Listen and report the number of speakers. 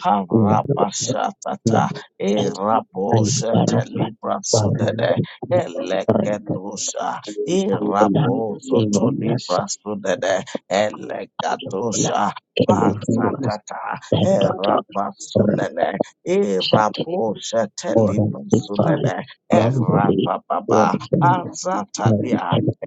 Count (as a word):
two